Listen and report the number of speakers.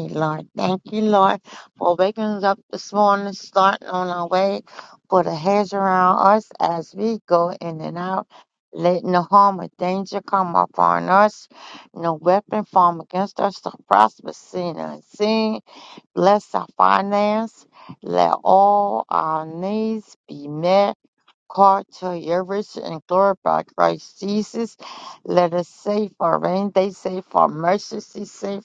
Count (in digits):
1